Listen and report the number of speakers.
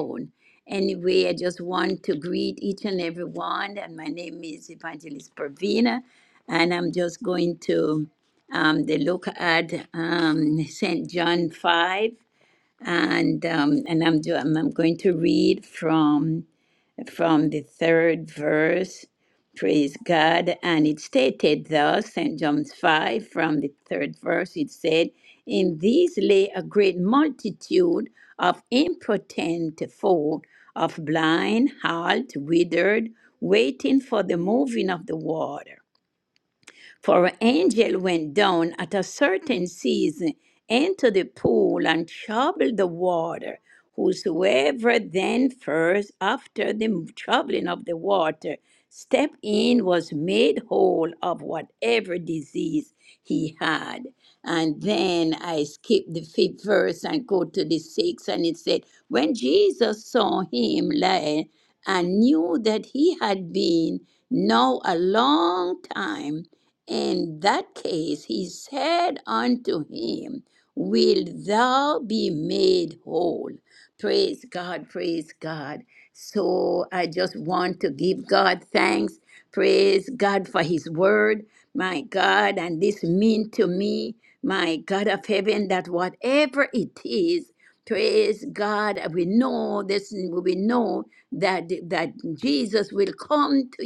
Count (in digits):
1